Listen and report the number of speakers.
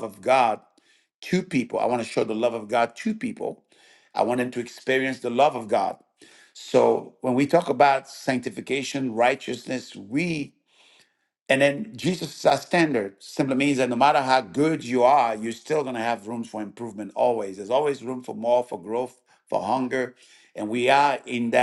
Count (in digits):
1